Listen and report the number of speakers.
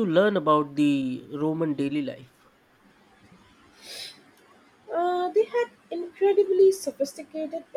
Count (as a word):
two